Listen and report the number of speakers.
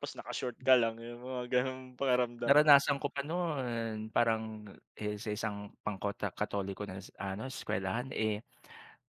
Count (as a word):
two